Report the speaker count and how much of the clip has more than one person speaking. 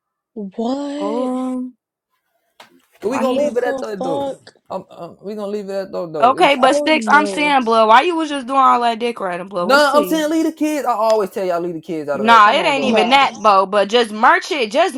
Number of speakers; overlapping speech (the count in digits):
3, about 31%